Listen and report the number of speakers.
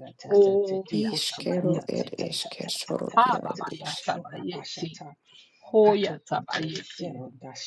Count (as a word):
three